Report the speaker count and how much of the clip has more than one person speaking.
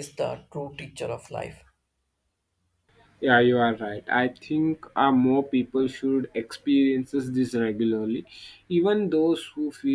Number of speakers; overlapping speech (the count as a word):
two, no overlap